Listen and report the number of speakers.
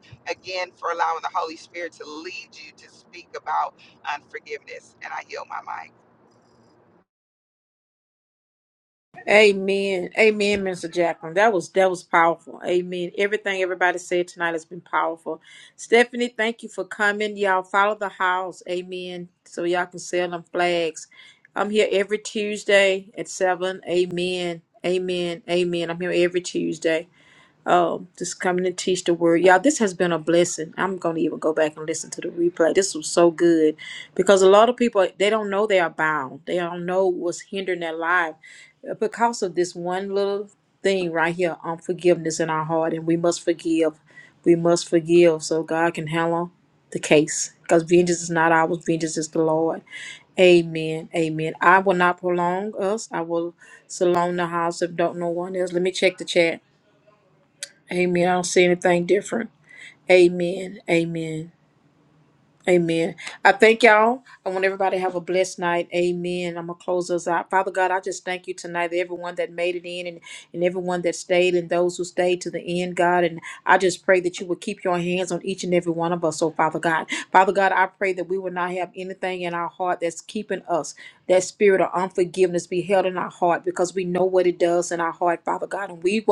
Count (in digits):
2